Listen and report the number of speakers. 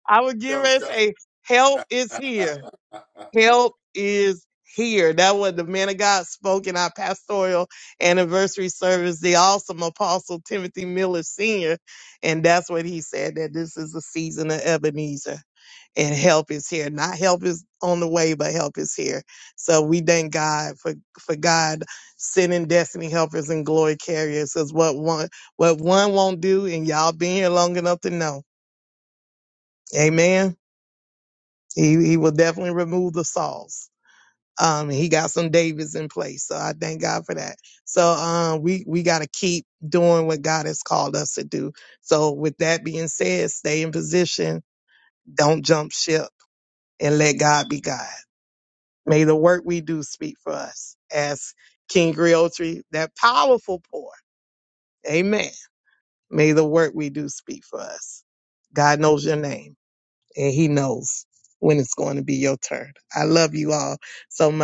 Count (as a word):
two